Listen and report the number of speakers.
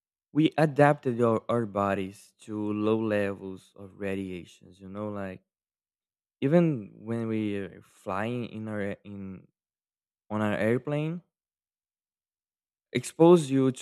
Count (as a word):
one